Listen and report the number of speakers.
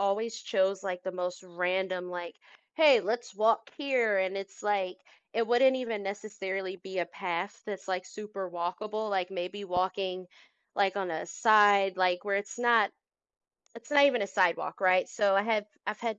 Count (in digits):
1